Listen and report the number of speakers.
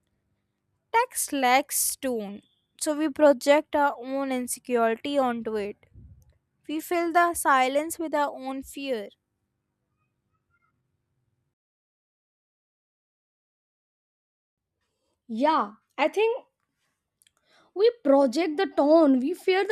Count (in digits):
2